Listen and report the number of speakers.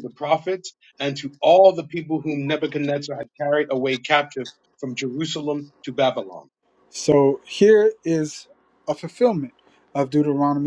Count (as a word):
two